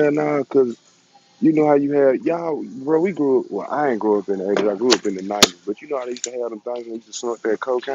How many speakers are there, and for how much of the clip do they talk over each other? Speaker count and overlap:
one, no overlap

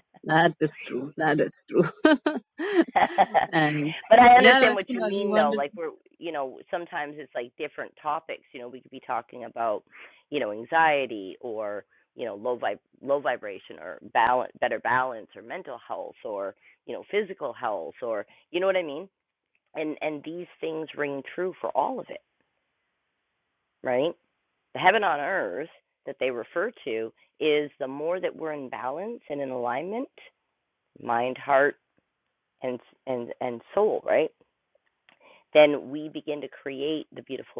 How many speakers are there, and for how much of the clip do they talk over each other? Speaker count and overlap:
two, about 4%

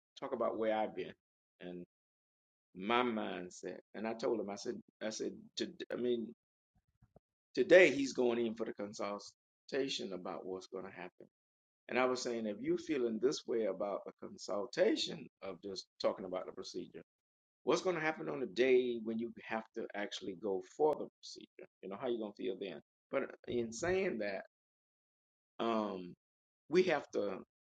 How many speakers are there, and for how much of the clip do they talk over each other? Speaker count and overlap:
one, no overlap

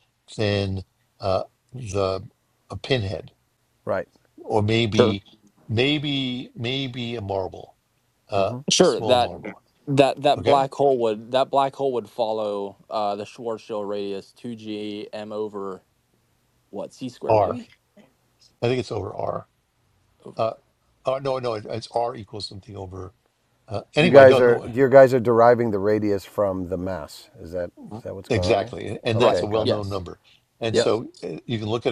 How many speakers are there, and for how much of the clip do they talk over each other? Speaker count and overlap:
three, about 13%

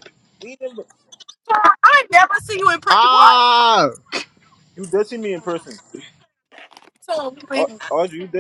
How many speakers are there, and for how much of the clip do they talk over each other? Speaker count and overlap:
three, about 8%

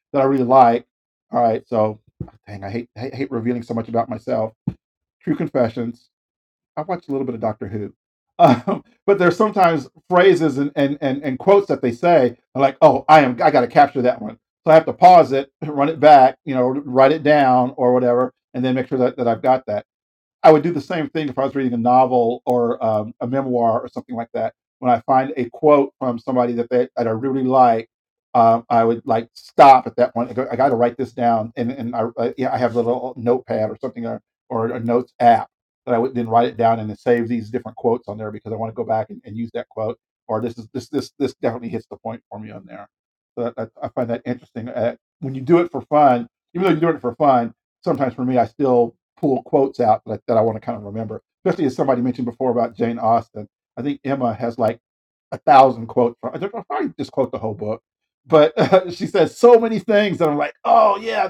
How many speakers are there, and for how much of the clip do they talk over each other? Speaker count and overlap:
one, no overlap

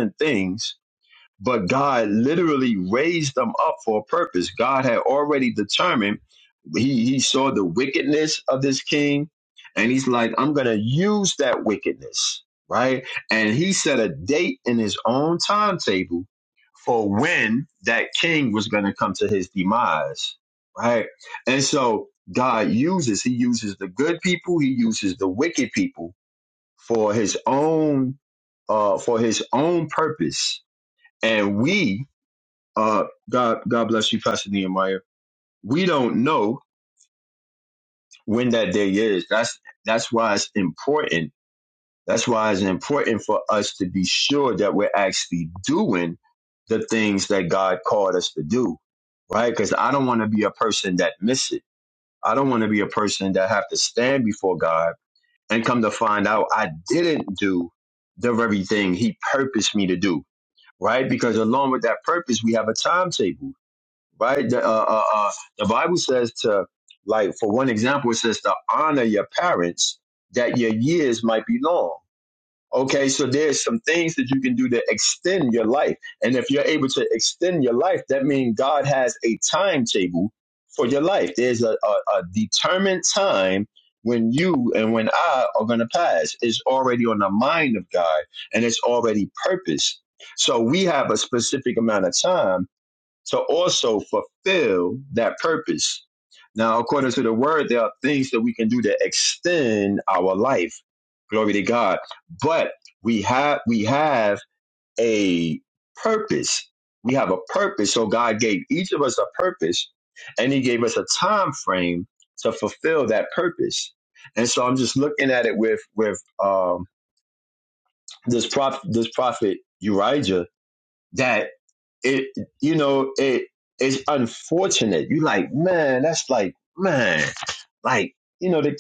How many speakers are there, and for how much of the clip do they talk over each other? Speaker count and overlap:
one, no overlap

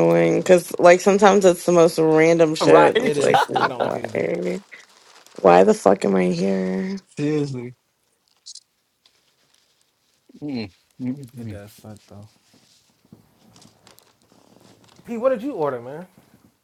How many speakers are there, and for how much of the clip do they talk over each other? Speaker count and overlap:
three, about 11%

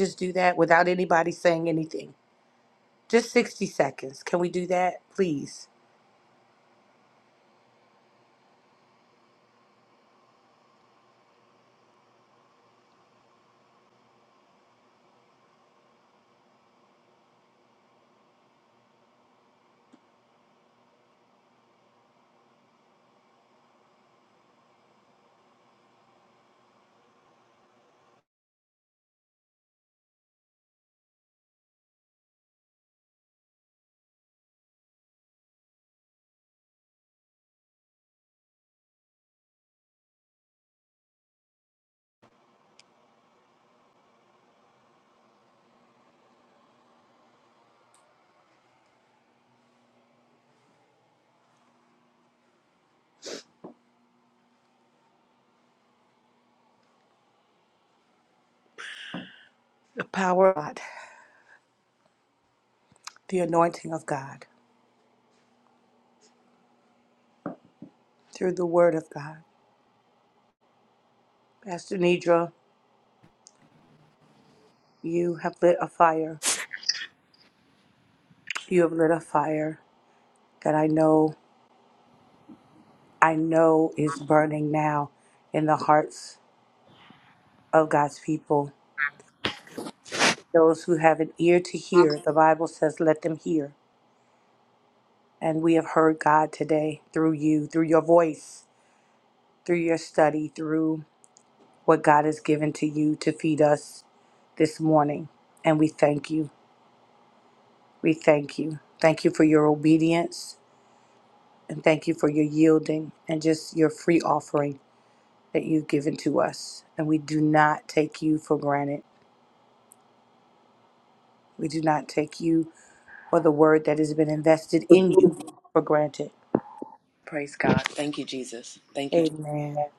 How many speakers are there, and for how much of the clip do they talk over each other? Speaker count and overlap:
two, under 1%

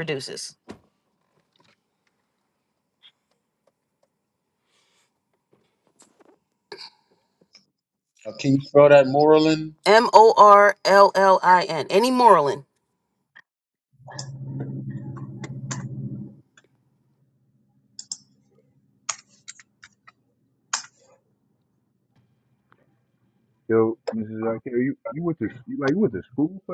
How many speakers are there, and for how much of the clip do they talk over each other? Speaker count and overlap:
three, no overlap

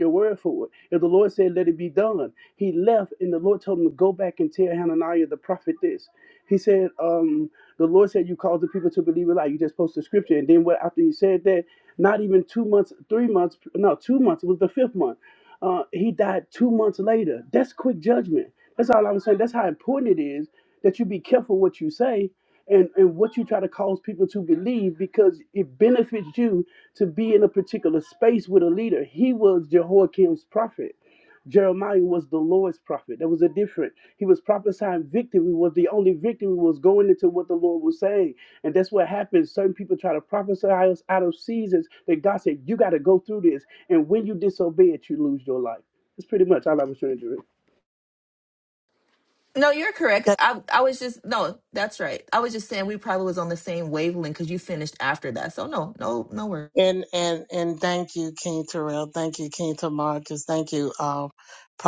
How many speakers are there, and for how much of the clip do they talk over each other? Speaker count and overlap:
three, under 1%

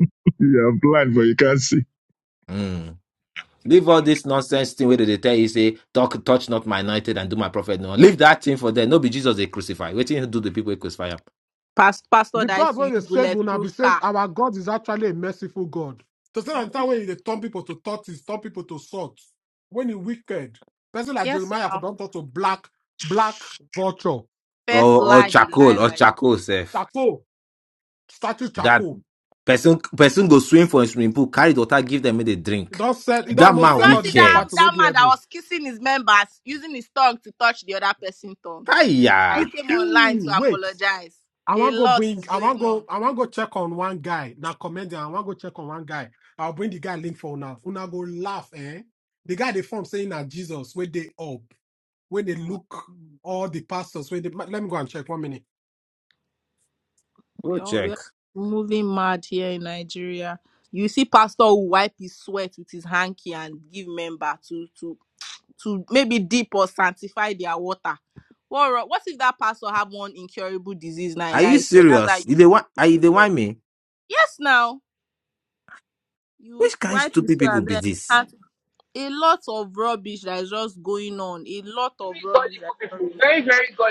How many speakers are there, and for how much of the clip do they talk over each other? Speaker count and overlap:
five, about 13%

